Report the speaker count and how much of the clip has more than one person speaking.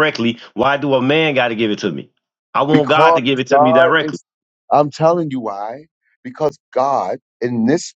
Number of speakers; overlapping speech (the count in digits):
2, about 18%